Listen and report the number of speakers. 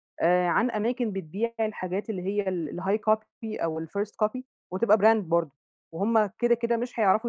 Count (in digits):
1